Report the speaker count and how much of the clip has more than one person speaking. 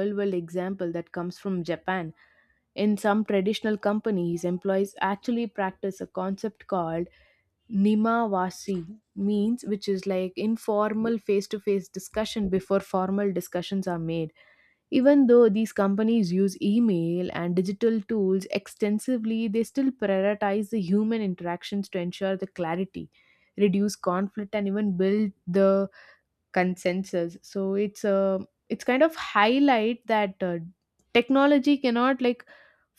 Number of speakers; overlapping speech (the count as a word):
one, no overlap